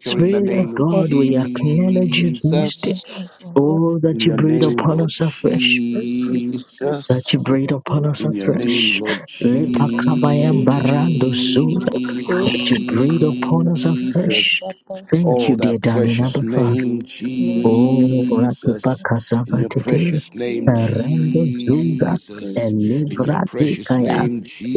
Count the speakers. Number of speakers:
three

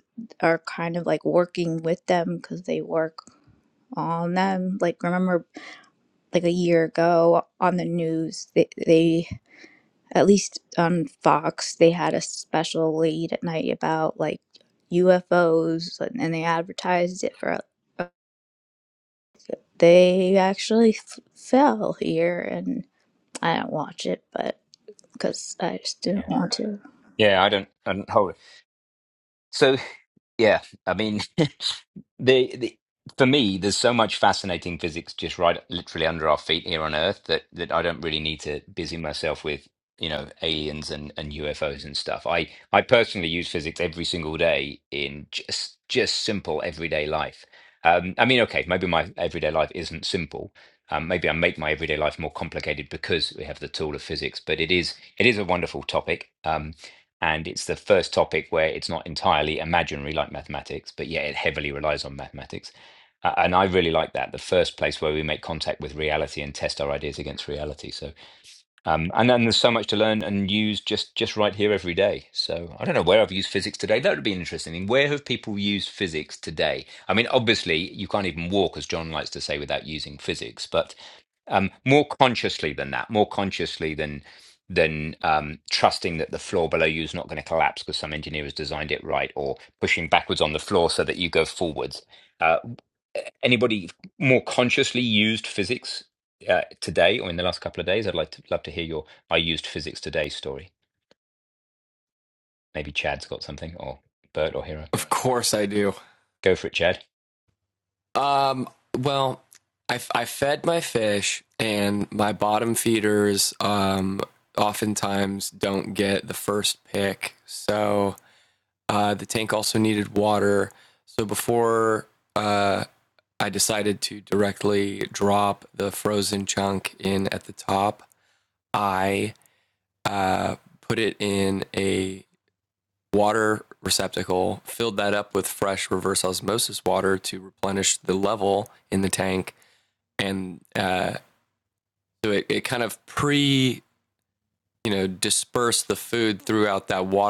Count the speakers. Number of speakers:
three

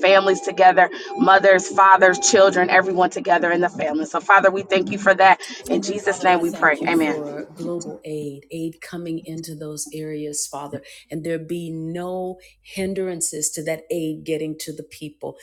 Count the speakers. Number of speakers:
two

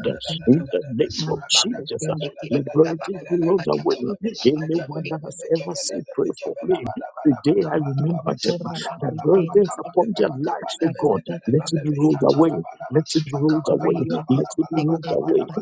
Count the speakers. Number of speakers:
two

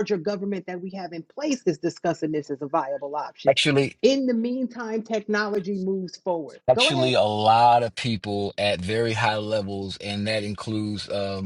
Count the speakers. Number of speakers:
two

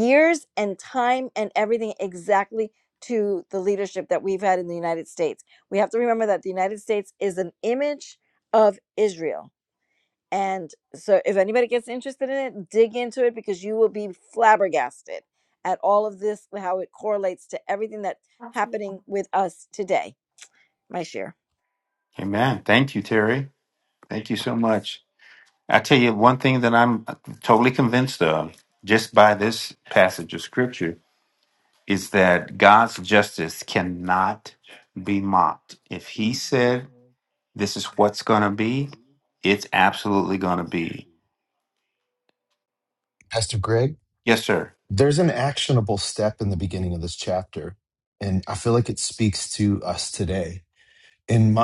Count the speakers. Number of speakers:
three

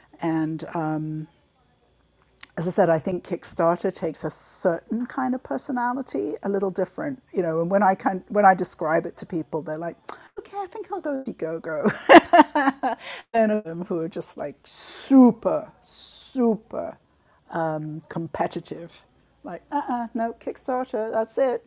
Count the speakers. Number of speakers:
one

